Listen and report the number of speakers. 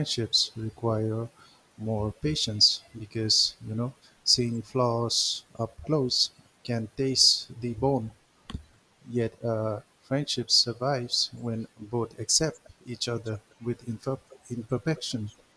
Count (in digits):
1